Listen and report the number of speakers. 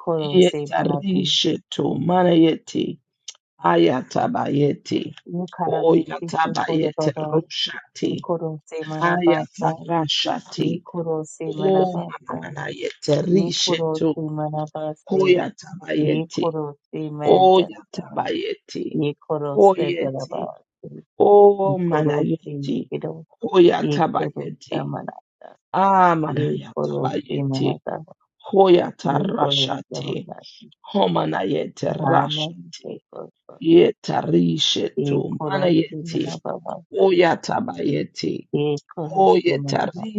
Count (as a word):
two